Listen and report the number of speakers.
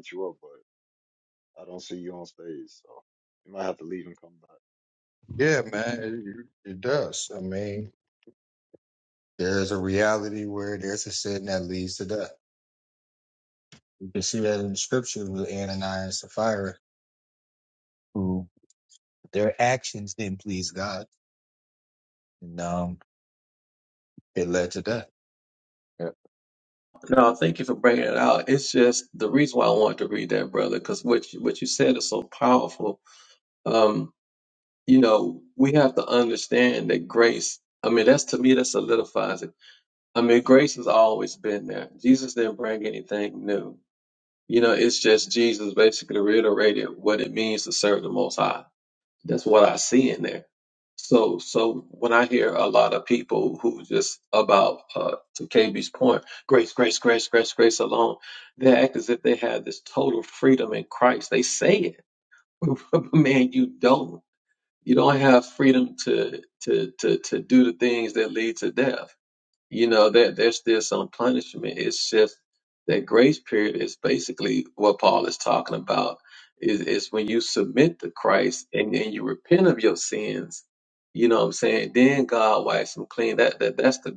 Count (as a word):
three